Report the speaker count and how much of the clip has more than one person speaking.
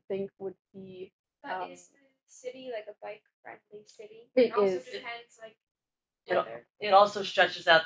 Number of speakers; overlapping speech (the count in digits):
3, about 17%